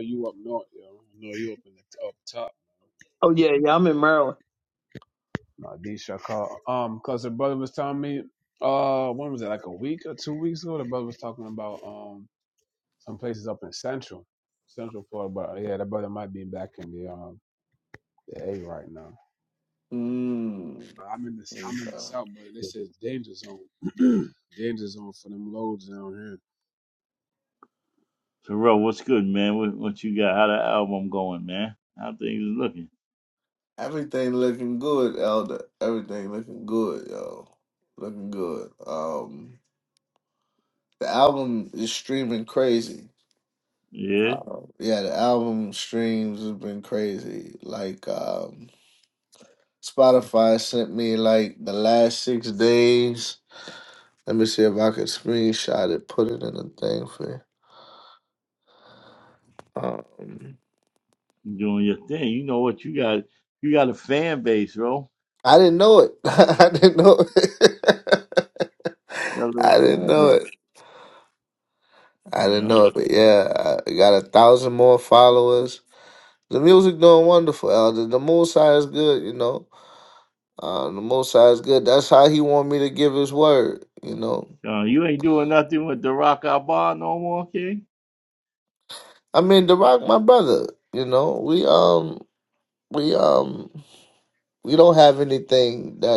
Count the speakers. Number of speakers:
4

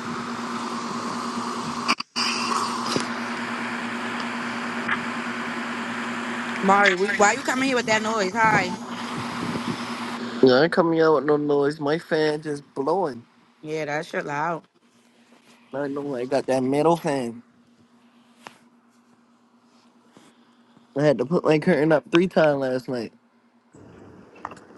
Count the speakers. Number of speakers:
2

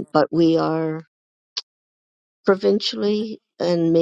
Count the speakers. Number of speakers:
1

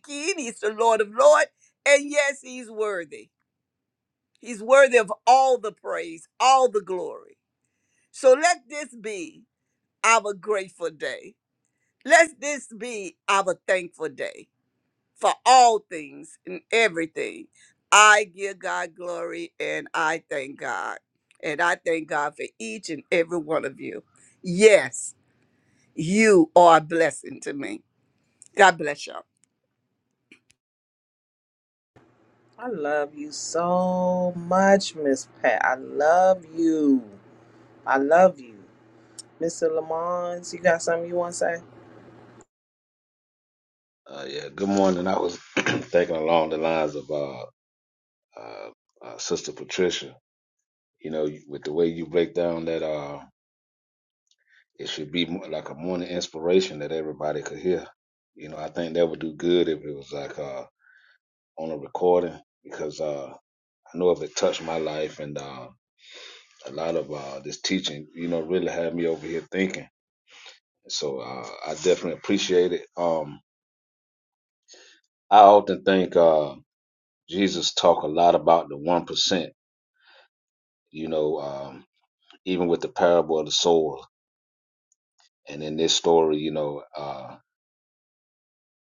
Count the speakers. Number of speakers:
3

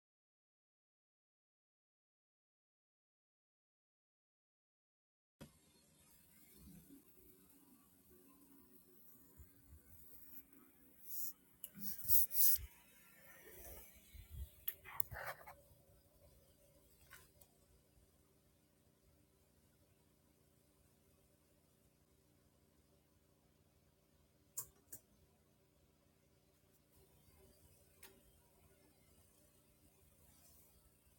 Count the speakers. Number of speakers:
0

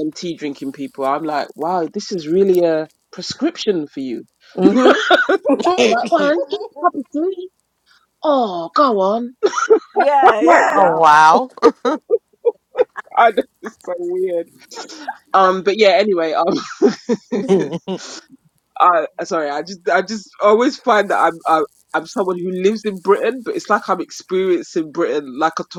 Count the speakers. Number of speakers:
3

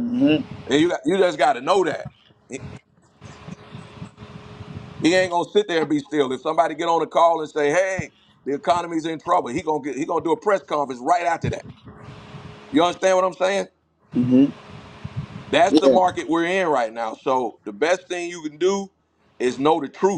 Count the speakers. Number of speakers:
2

